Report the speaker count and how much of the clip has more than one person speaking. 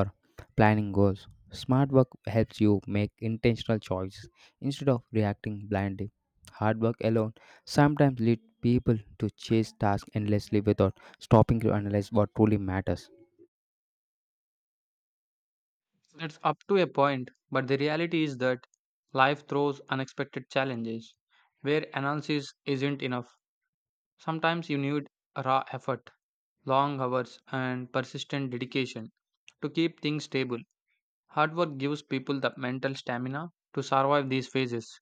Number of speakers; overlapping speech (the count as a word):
two, no overlap